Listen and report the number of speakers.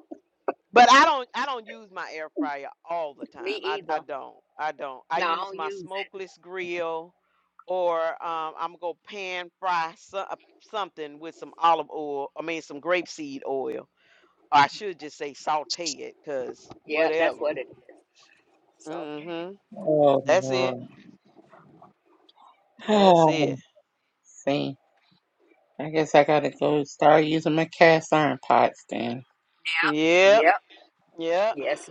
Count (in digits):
3